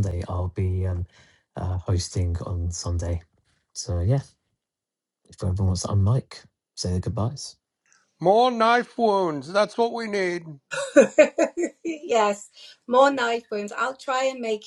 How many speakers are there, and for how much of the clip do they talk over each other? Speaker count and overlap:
three, no overlap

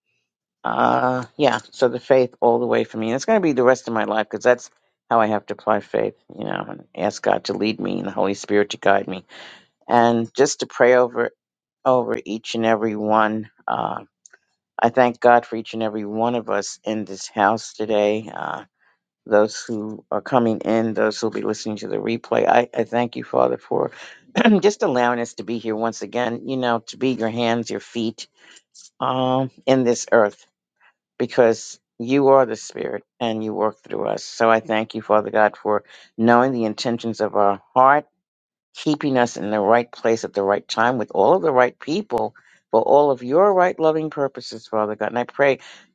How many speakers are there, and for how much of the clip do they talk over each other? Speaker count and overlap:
one, no overlap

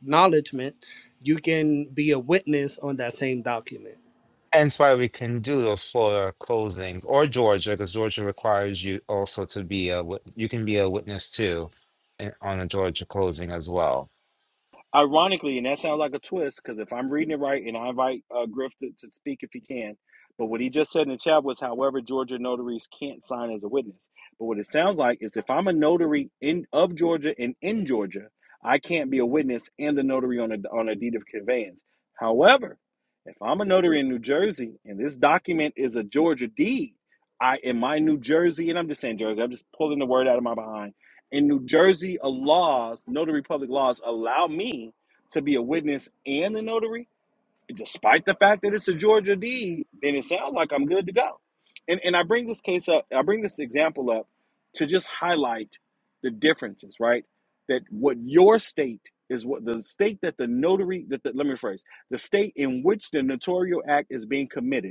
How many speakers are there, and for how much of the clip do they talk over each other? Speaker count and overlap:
three, no overlap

